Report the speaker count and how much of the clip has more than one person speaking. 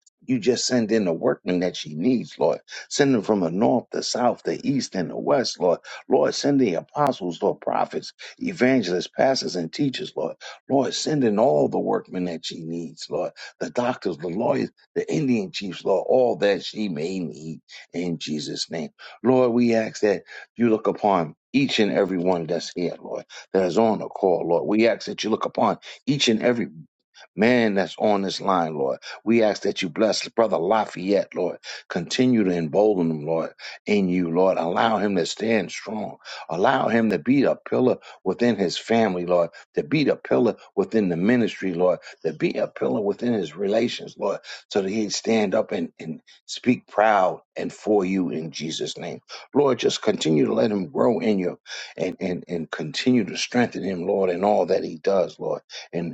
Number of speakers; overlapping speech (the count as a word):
one, no overlap